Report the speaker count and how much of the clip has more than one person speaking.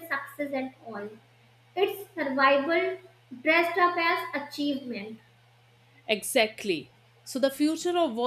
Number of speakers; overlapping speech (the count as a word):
two, no overlap